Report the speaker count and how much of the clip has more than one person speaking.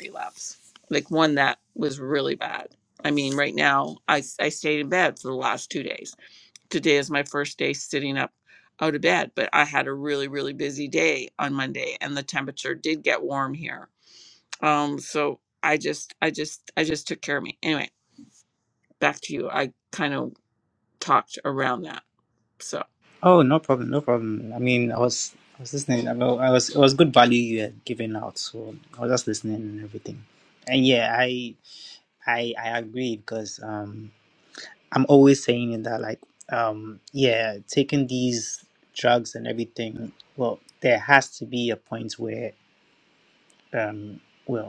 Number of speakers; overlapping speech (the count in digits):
2, no overlap